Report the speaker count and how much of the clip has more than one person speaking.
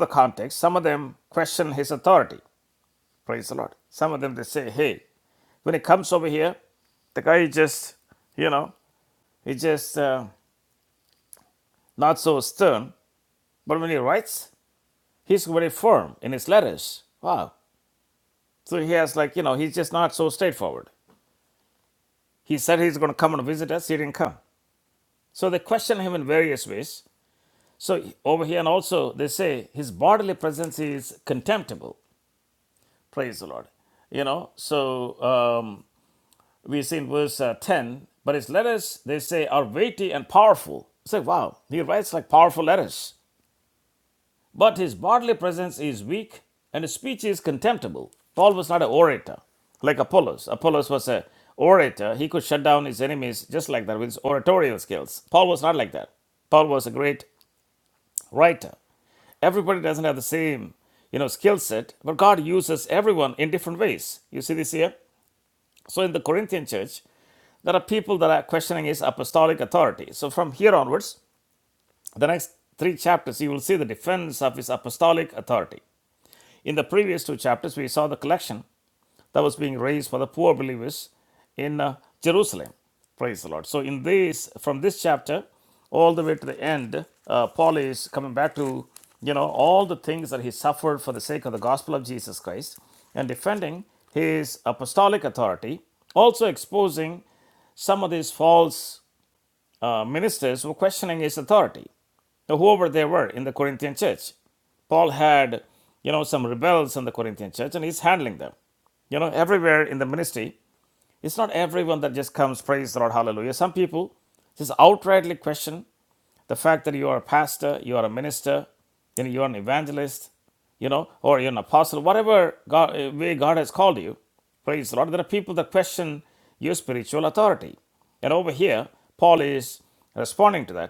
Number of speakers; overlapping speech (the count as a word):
one, no overlap